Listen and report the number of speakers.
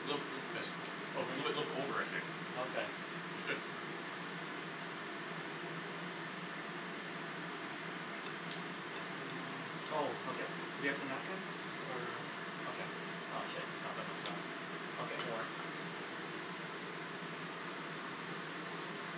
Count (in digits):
2